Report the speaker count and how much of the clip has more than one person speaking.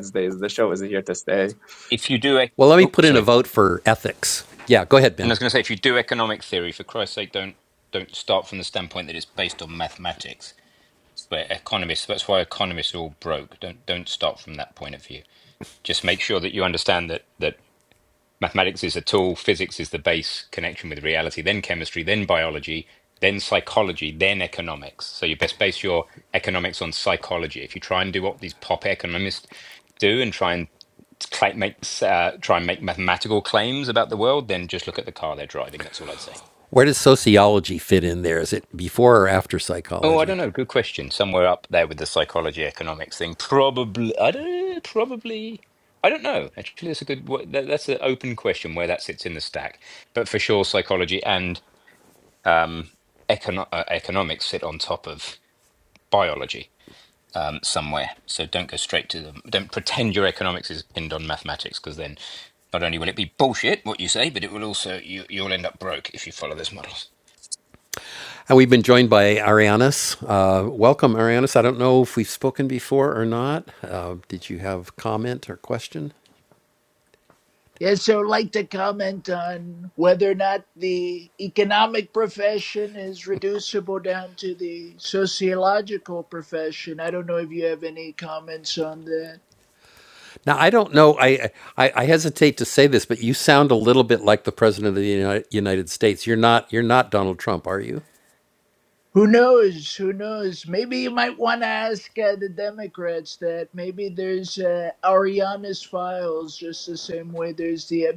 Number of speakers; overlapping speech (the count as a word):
four, about 1%